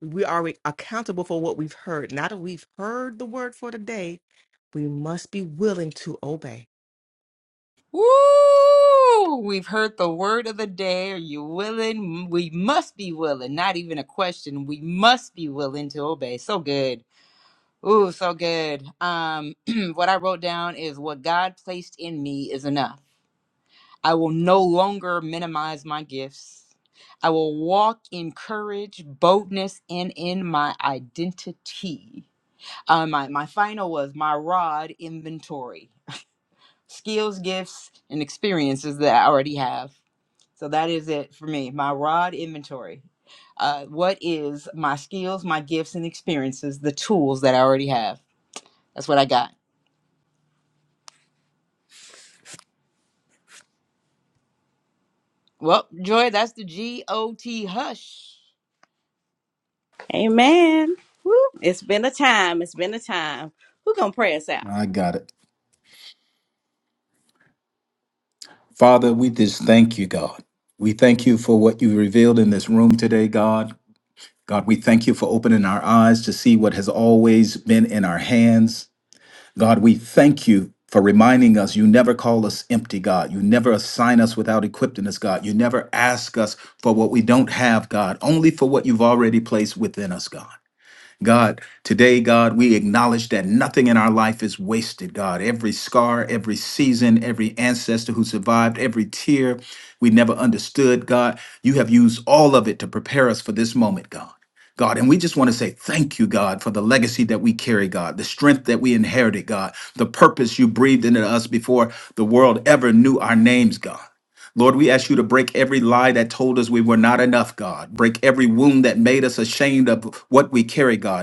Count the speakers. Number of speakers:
4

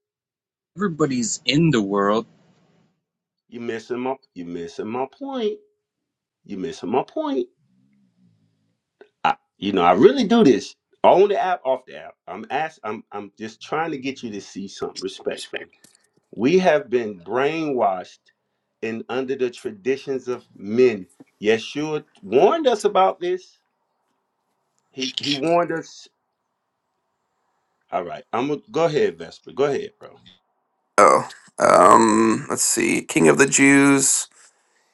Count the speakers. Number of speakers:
3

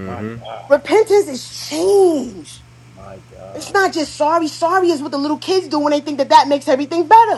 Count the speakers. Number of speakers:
2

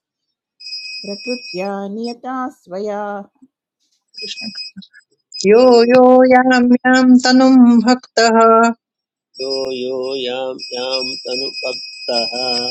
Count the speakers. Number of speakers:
3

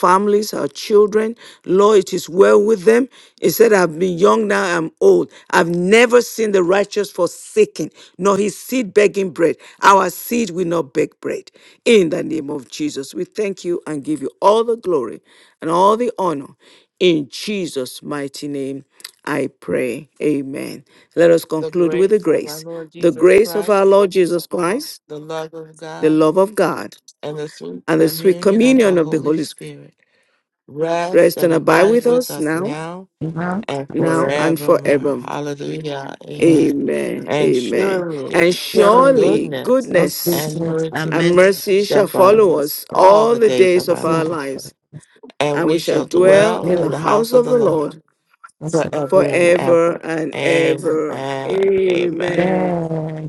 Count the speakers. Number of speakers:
3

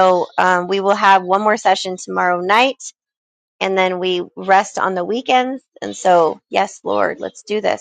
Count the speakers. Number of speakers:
1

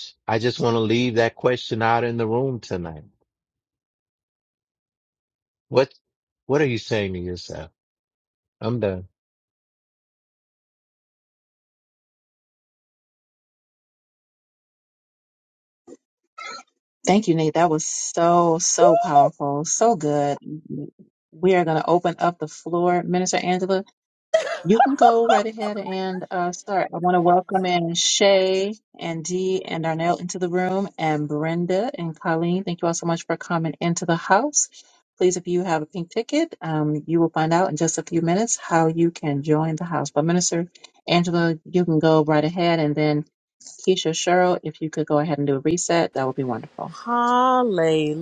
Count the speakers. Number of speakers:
3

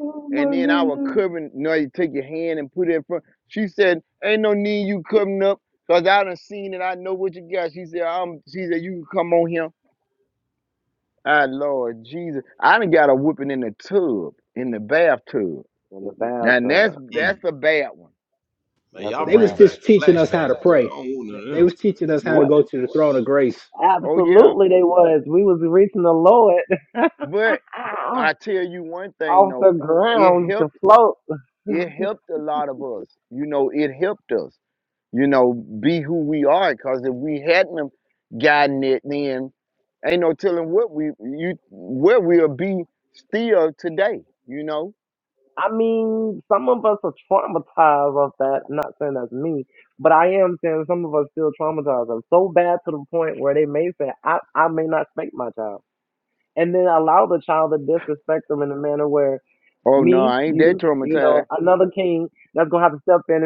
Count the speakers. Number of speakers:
4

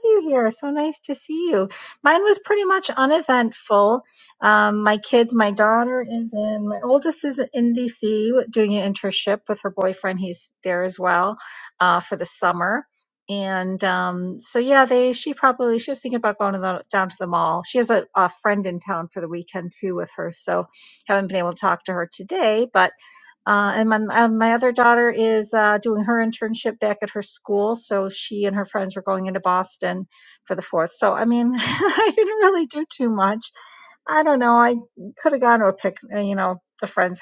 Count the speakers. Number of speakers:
1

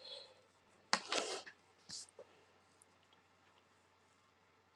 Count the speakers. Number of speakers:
0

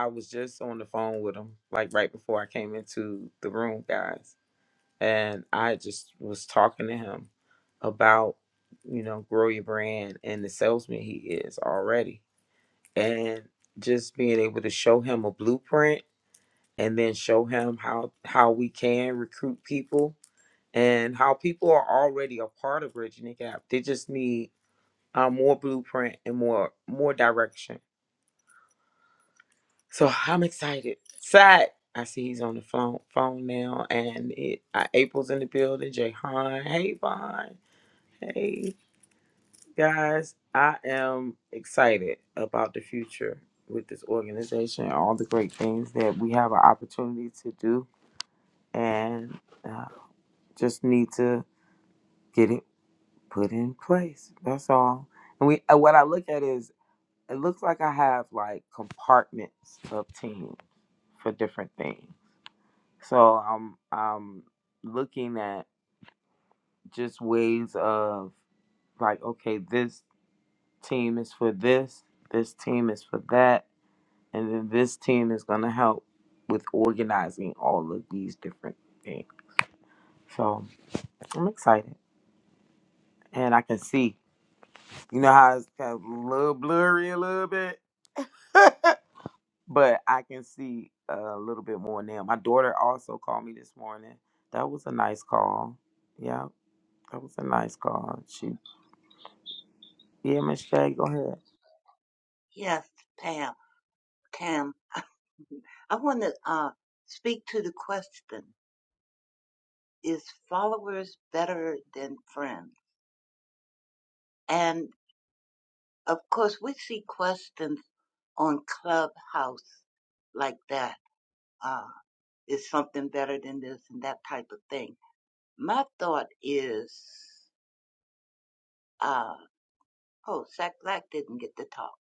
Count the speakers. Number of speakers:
2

